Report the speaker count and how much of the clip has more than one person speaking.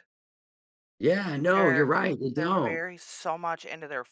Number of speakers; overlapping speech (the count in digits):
2, about 18%